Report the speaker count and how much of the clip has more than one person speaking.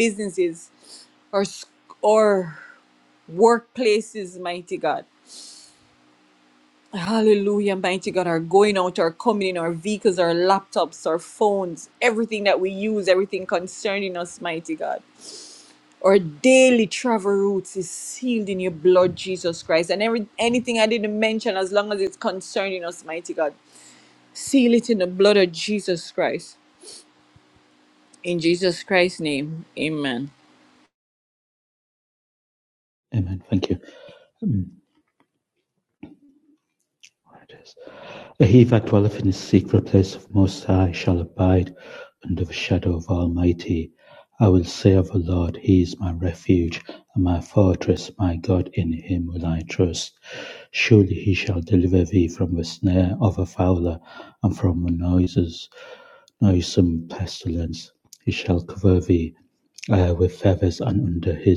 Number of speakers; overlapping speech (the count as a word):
two, no overlap